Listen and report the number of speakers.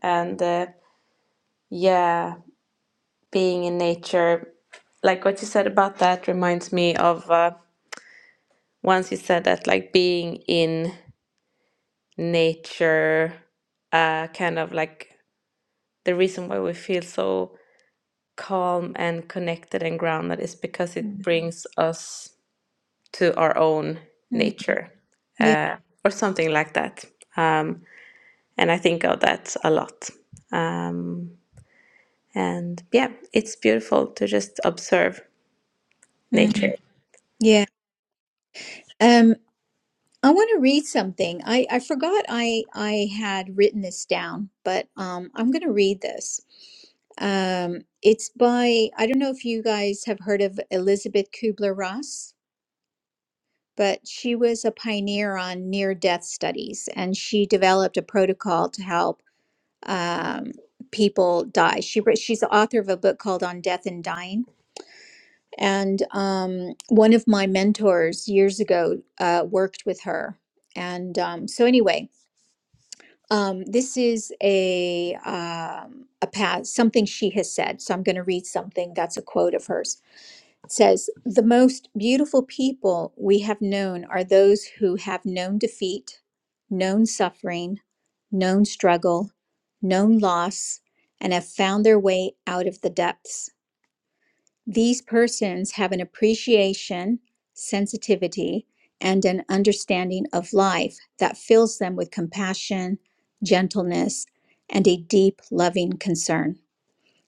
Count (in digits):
2